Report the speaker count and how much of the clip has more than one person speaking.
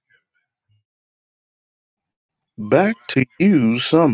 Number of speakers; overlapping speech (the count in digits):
1, no overlap